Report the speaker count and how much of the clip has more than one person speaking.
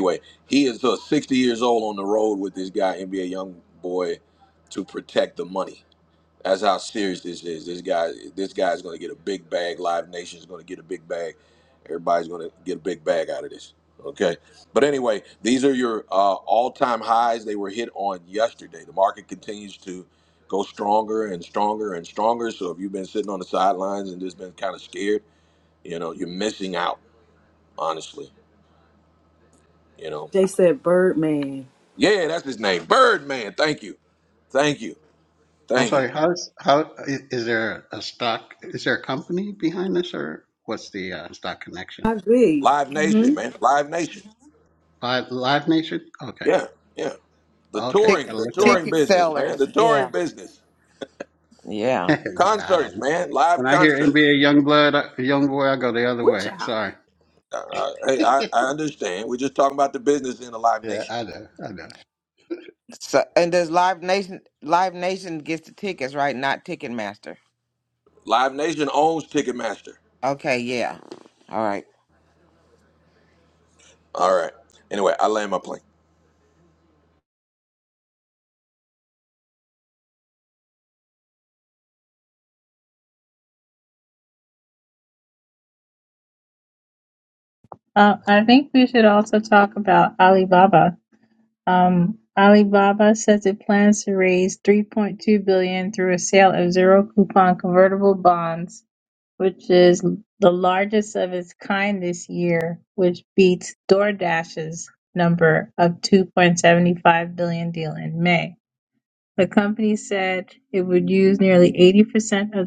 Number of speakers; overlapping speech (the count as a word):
five, about 5%